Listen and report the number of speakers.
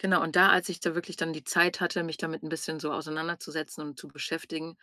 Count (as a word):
one